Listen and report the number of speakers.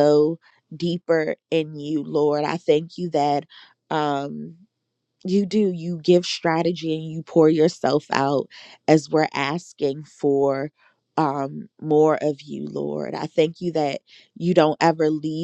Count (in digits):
1